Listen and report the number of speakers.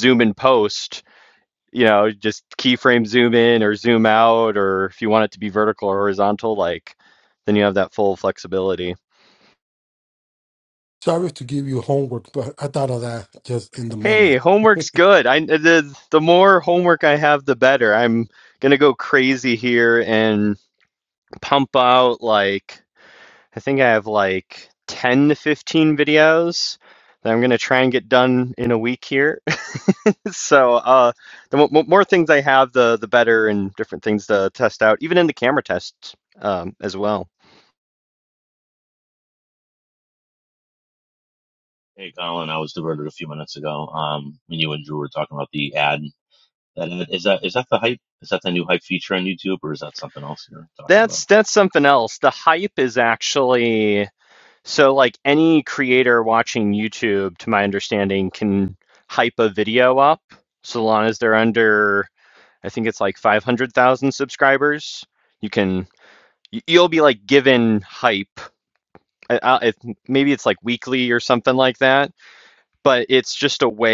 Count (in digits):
3